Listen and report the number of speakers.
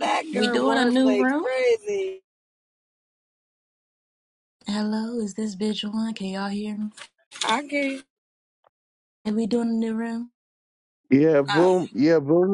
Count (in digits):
3